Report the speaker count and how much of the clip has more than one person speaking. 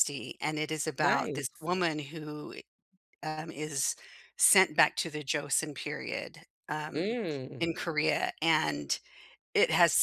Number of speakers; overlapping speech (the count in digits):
2, about 6%